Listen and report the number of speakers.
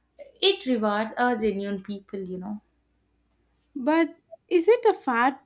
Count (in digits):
2